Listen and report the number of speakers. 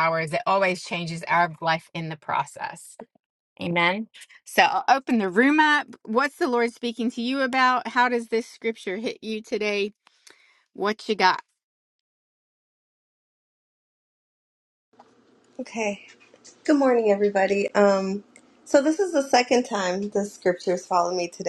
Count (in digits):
2